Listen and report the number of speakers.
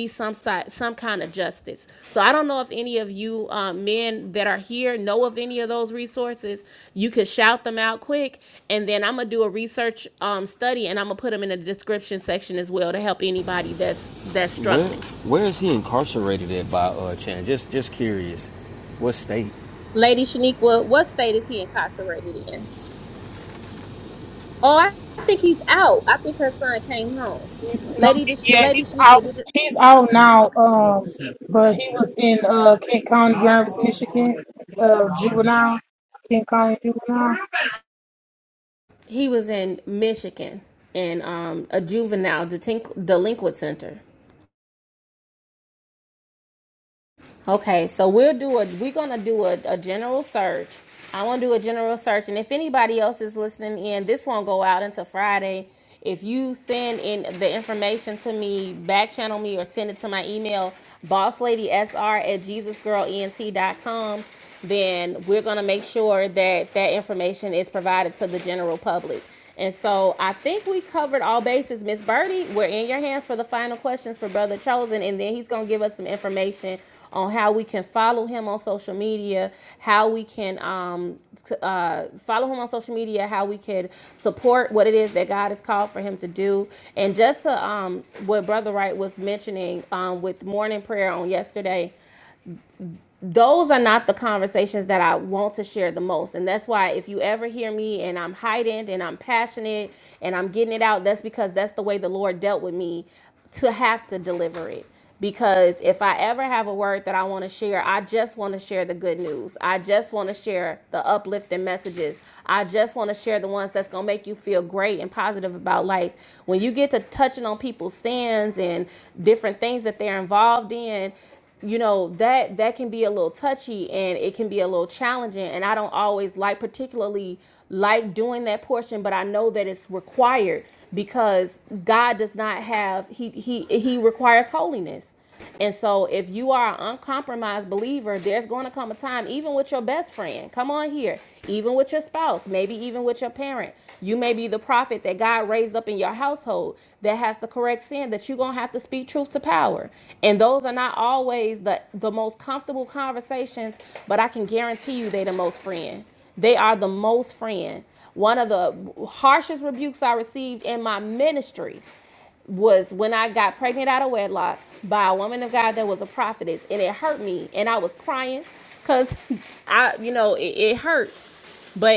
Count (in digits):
3